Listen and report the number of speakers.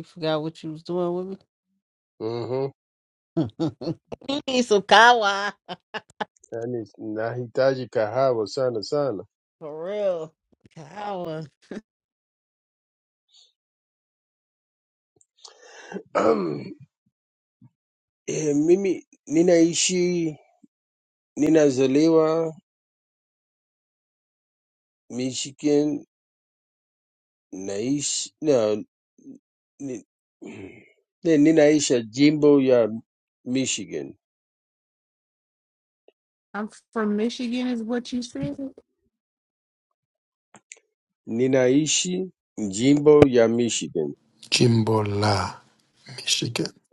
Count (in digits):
4